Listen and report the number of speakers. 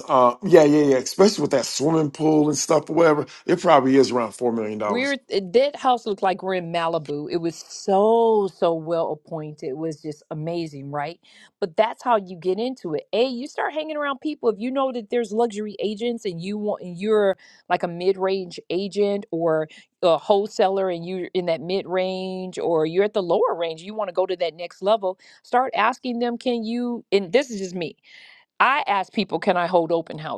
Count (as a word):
two